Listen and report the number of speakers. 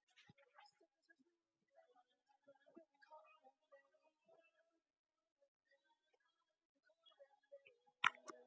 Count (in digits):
0